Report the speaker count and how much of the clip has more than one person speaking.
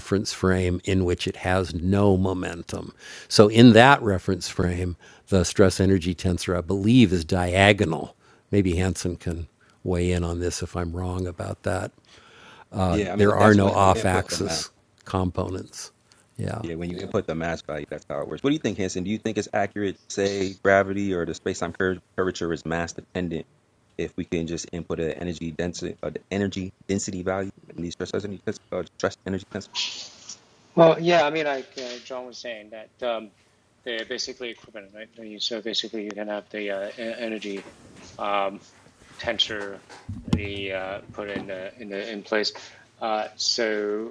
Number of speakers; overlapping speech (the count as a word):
three, about 4%